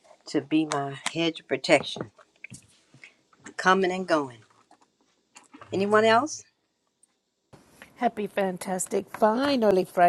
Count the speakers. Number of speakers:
2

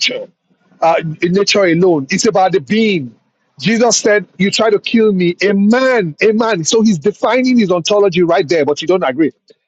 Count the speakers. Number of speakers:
1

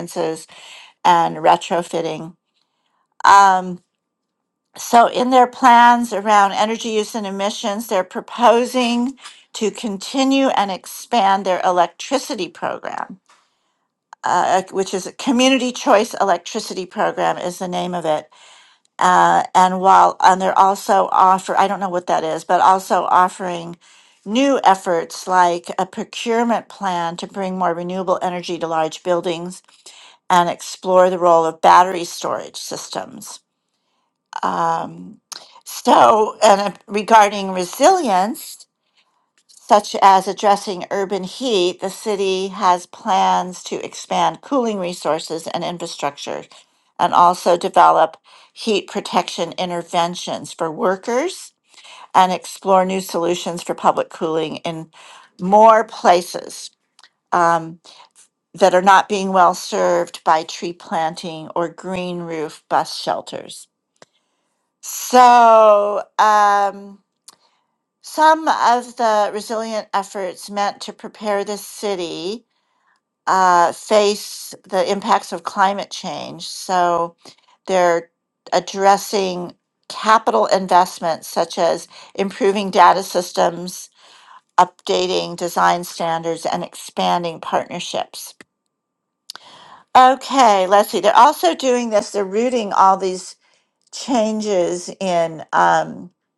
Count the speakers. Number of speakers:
1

